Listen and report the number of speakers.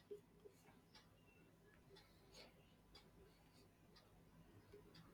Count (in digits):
0